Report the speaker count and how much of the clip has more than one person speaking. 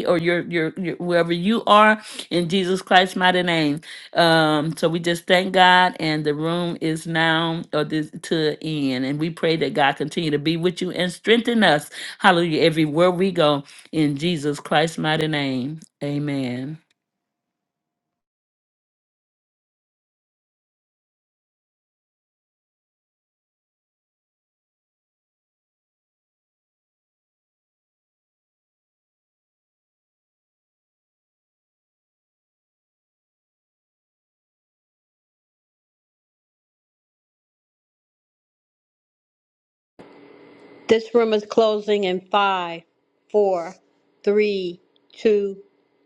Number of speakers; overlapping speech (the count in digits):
2, no overlap